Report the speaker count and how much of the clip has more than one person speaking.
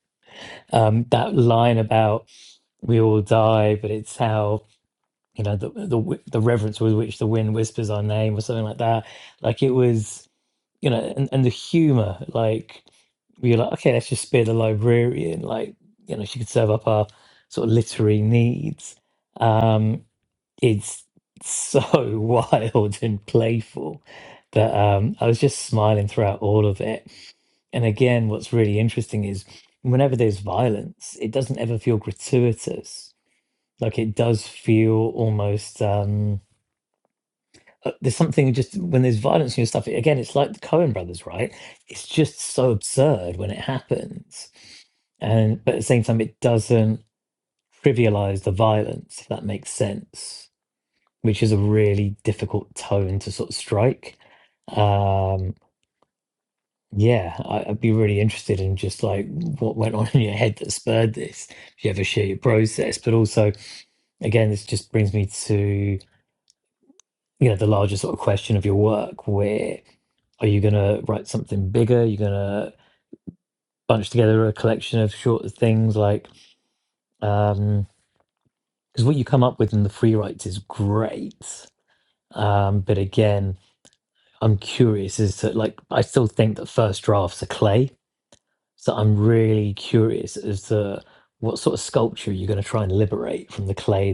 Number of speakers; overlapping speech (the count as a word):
one, no overlap